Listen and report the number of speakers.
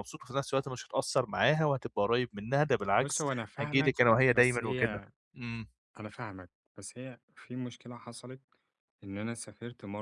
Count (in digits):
2